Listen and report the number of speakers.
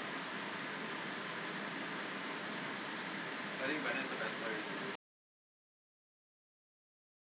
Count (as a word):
zero